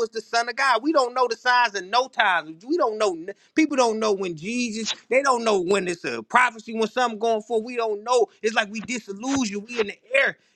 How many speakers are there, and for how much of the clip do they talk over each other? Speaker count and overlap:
1, no overlap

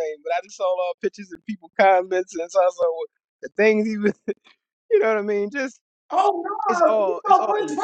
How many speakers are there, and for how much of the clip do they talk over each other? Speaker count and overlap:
2, about 15%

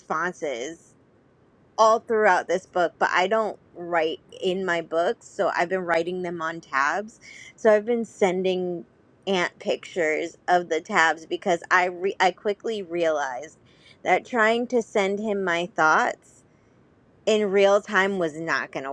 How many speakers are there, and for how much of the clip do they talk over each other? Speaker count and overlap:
1, no overlap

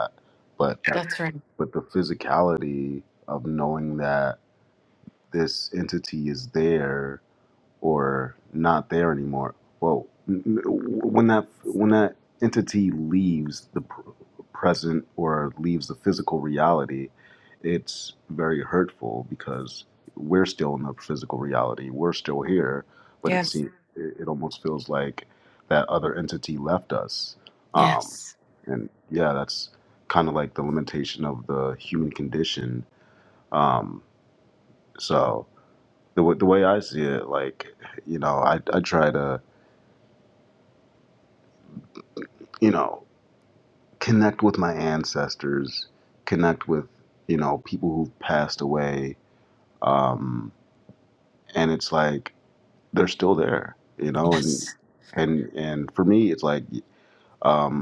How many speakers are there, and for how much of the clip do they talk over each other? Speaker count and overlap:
2, about 1%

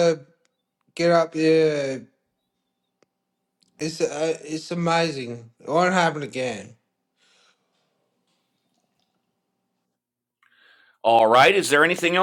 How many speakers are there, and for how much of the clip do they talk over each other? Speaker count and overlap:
2, no overlap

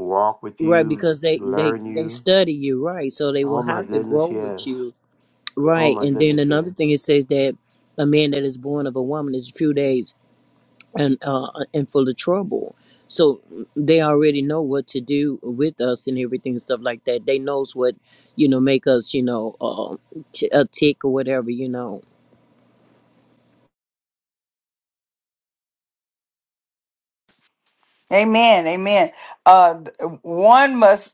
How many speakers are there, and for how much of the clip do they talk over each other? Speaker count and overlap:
3, about 12%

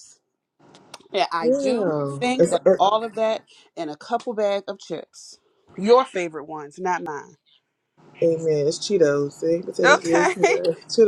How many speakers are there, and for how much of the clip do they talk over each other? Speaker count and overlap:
2, about 17%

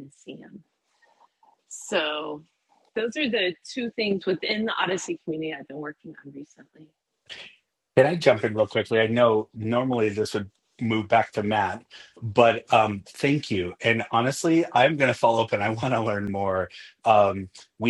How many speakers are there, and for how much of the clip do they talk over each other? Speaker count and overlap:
2, no overlap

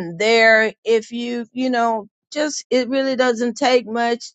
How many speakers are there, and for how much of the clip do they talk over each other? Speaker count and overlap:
1, no overlap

